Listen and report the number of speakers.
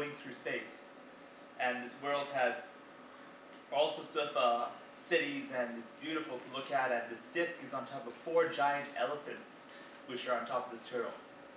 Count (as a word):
one